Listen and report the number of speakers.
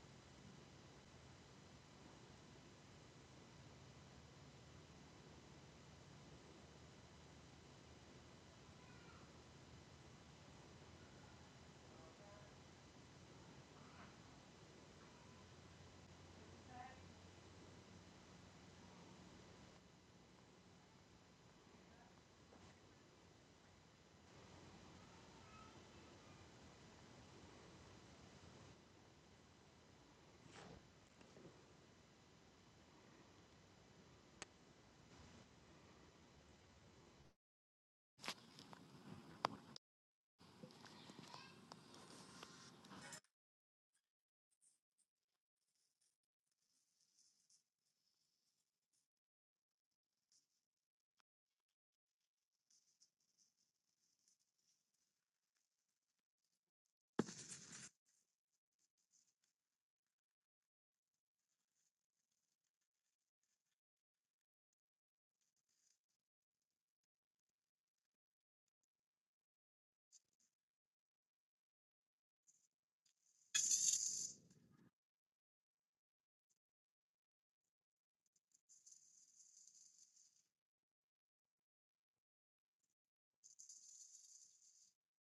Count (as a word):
zero